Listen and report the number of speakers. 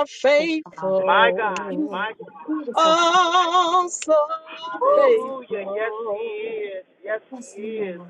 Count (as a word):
three